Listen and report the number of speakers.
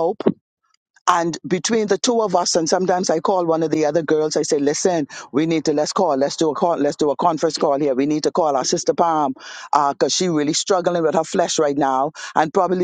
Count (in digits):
1